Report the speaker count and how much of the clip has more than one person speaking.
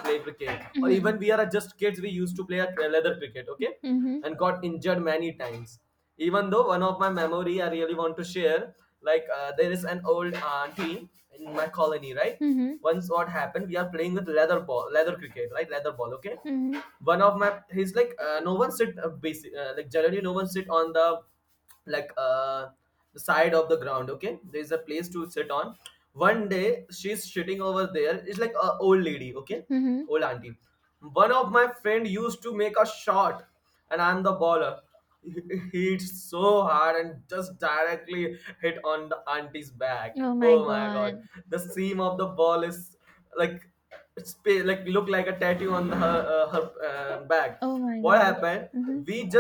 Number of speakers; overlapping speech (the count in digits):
2, about 3%